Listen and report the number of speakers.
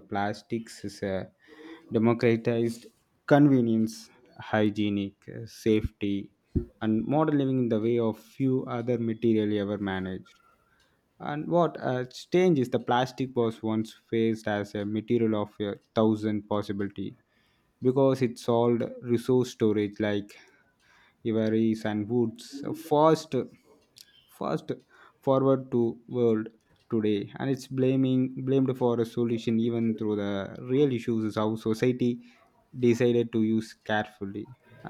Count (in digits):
1